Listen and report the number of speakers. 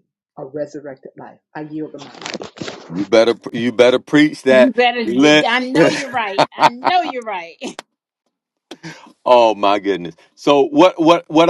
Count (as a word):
three